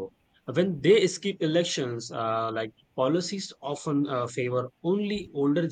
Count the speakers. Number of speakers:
1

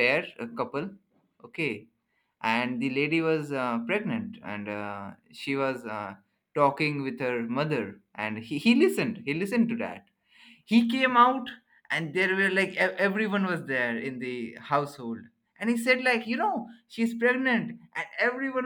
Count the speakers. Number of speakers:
1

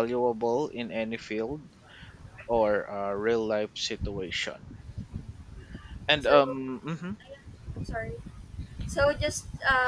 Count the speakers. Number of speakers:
2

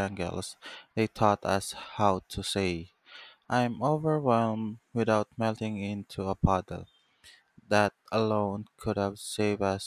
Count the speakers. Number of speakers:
1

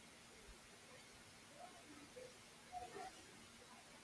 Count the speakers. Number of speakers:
0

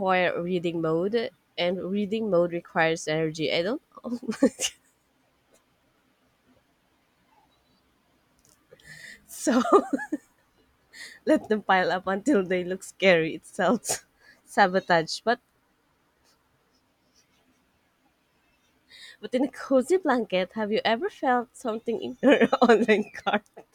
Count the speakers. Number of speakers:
1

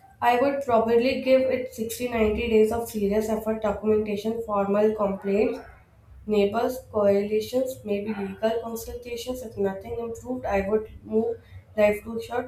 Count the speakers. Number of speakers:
1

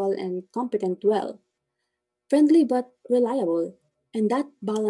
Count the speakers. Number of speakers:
1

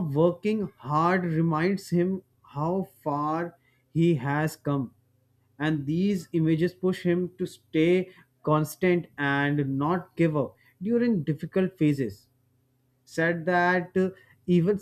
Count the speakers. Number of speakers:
1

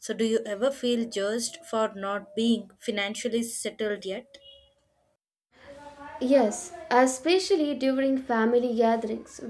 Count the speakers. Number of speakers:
2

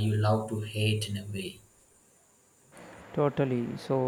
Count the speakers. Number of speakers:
2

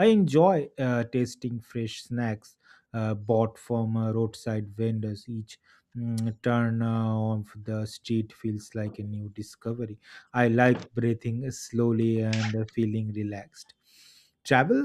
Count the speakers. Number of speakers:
1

